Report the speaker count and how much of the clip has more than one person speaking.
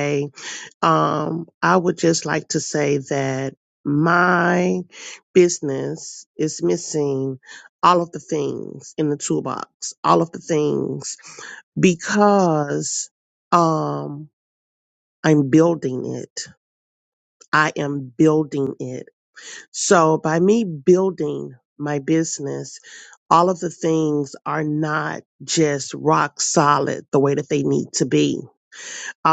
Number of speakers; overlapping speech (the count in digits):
1, no overlap